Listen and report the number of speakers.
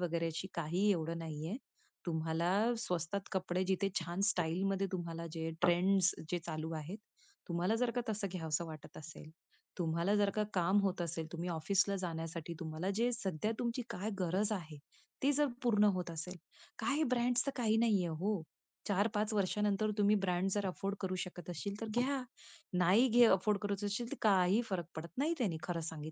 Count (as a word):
one